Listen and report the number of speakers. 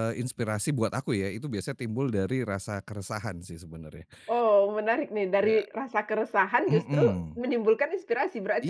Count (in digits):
2